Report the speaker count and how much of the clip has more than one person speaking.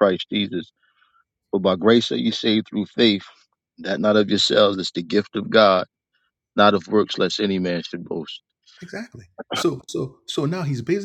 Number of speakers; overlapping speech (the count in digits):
2, no overlap